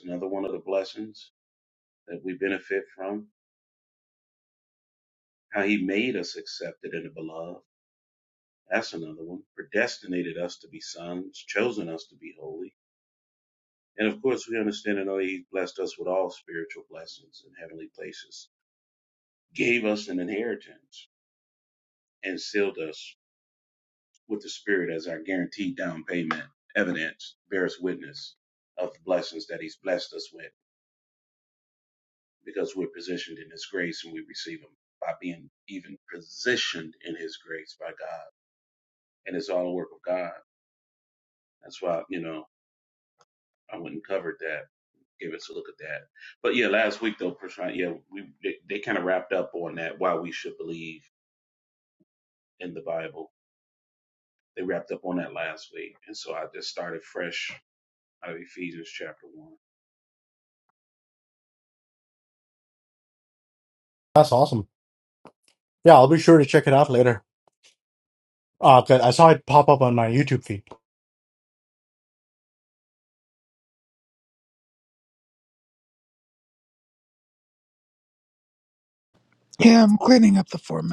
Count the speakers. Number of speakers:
3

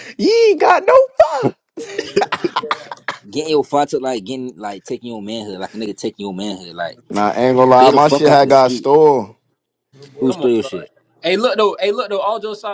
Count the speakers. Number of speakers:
4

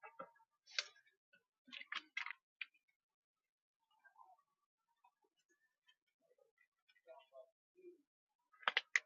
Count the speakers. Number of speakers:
0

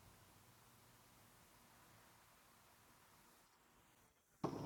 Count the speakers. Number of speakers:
0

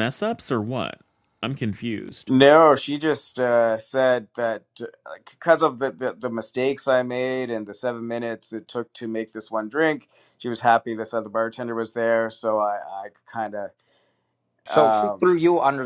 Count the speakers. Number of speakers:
3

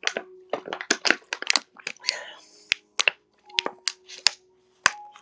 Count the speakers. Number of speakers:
0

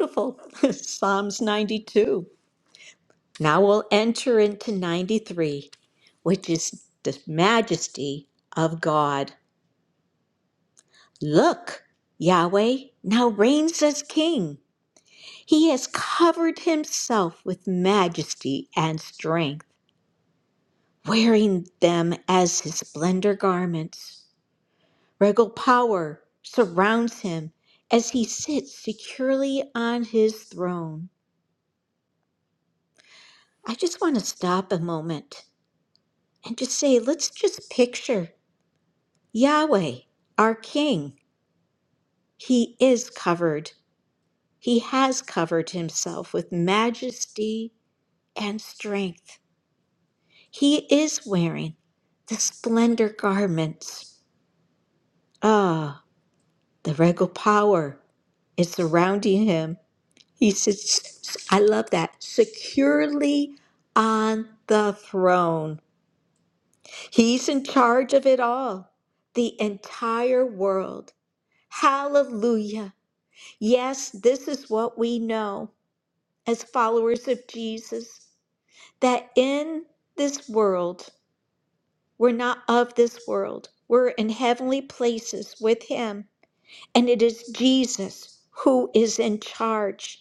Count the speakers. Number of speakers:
1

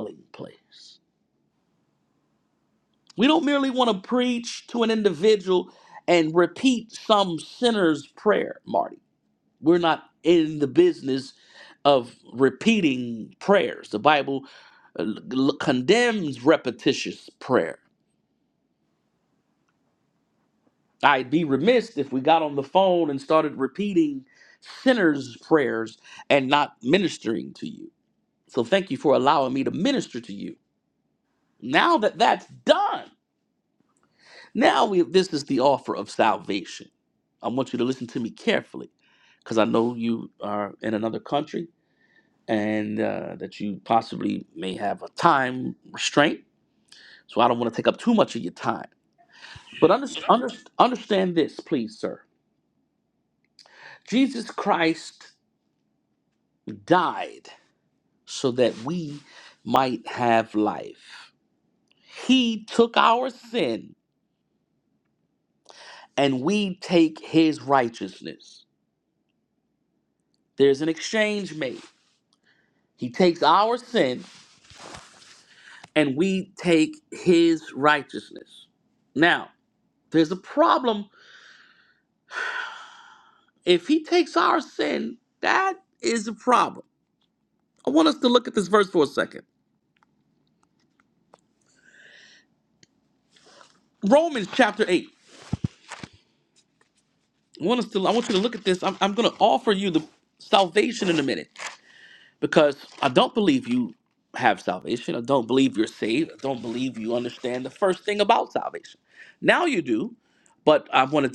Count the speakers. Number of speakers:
1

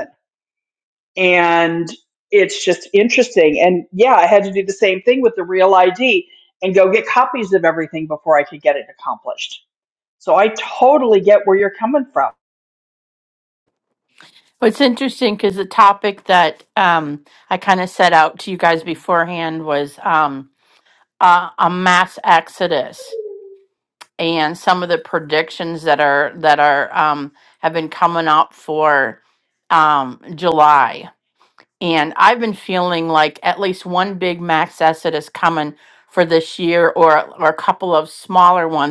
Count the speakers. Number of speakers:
2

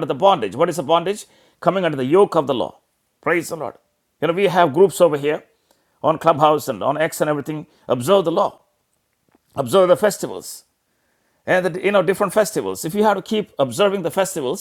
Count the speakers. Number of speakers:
1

